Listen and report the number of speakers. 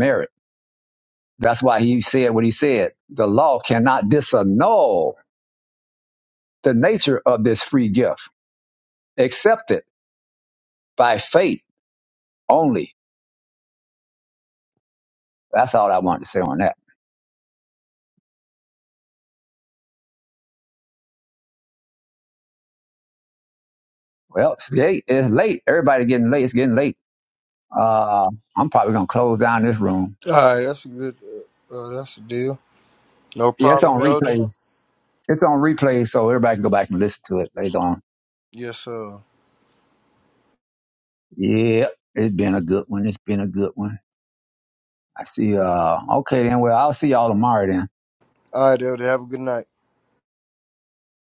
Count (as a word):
two